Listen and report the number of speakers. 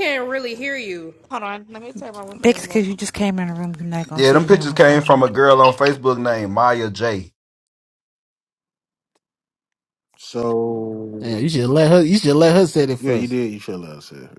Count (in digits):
6